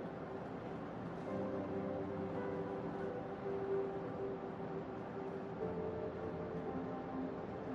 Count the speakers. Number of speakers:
0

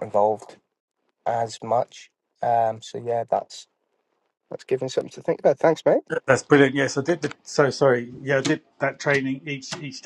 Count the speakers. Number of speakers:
2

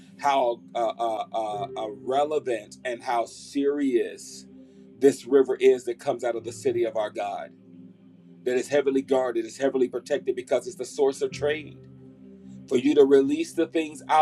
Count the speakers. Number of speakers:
1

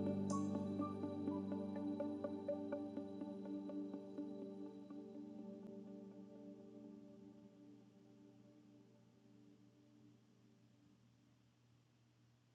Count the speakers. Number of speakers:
0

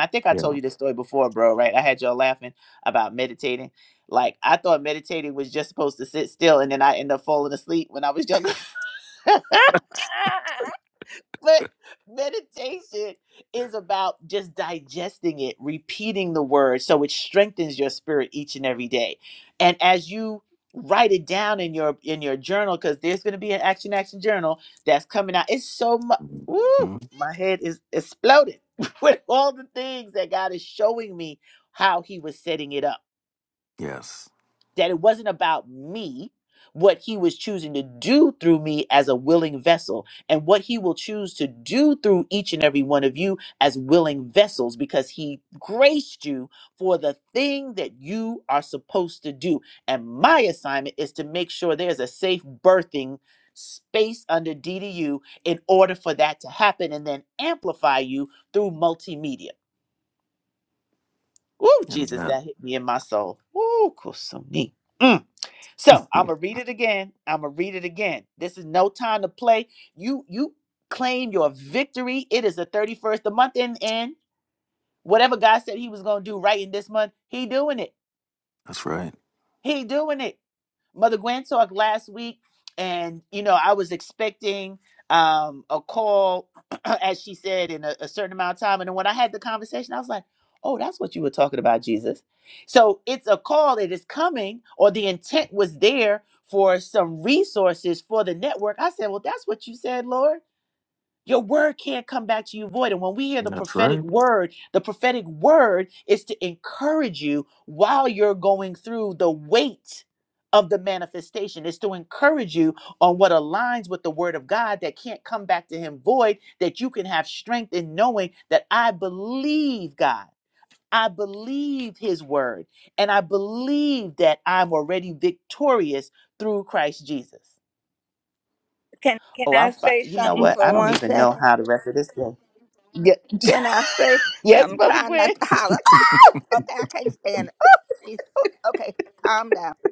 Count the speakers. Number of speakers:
3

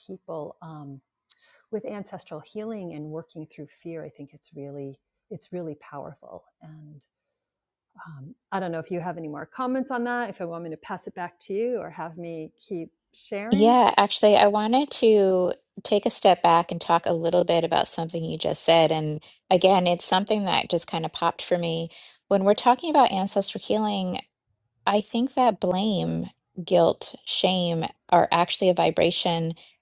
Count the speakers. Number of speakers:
2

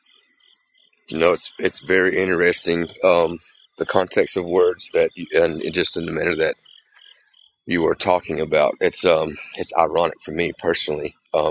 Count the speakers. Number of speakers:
1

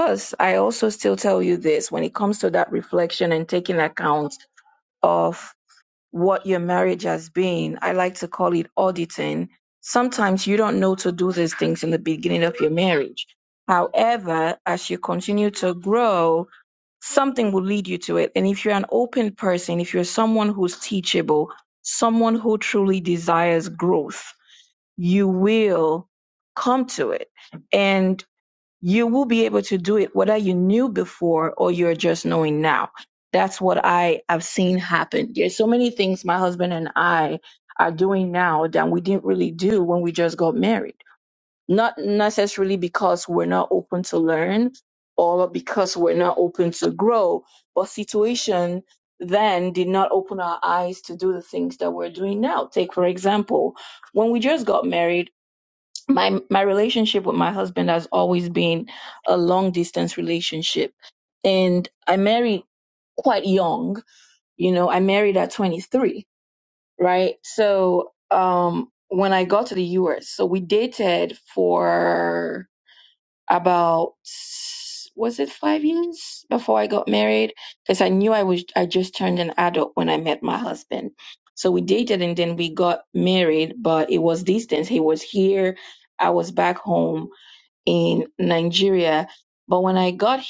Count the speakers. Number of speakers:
1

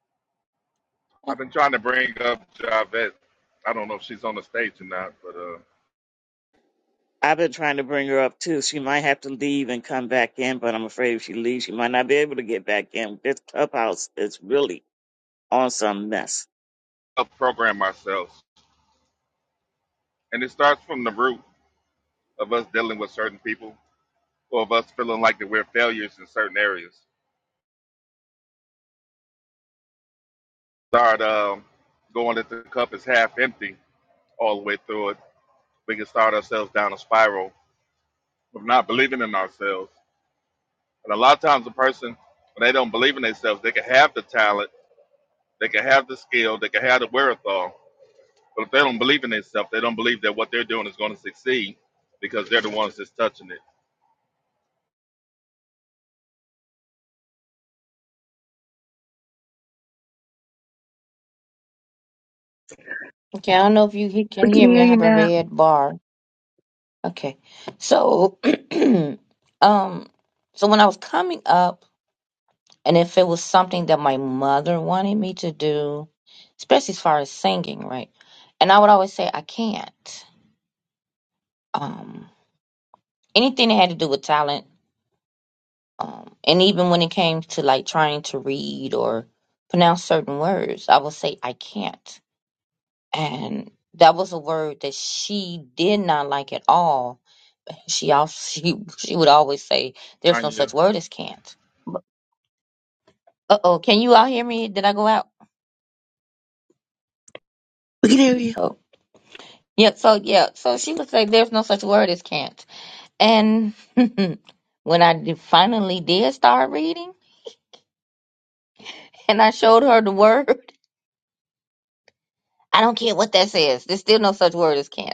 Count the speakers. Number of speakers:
4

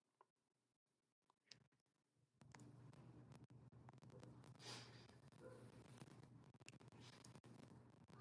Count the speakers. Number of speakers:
0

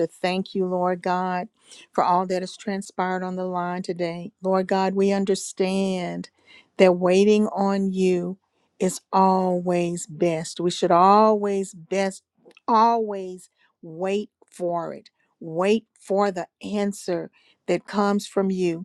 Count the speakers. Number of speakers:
1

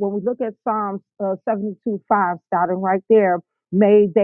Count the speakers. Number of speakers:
1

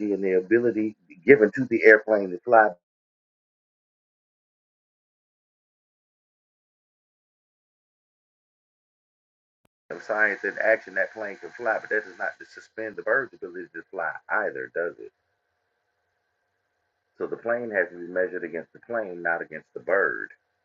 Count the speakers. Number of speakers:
1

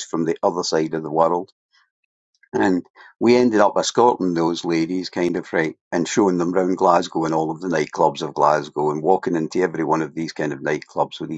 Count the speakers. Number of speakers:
1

